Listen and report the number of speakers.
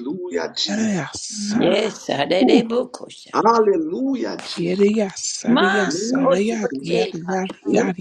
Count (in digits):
3